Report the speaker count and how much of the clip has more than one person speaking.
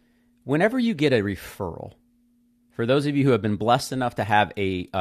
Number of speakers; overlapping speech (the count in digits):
1, no overlap